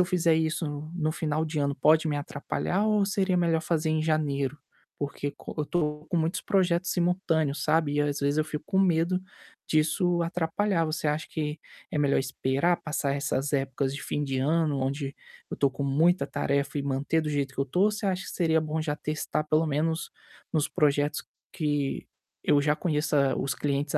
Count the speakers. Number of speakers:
1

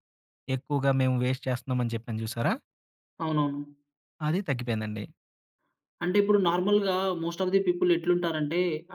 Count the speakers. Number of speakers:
2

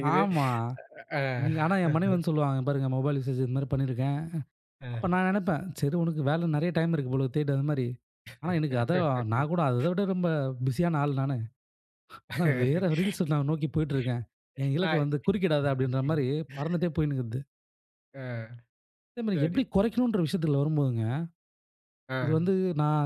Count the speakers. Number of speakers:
2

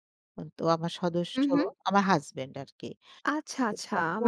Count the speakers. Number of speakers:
2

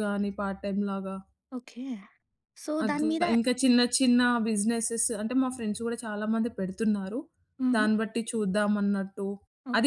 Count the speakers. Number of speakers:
2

